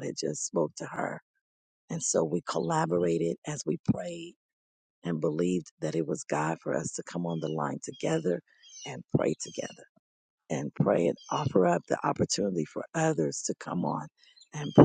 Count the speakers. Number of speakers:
one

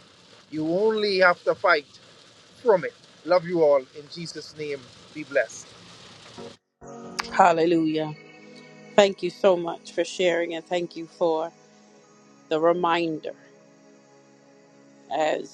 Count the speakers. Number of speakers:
two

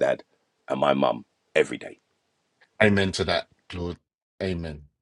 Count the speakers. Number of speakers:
two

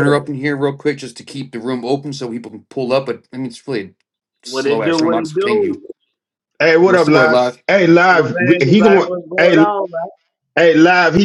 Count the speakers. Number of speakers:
three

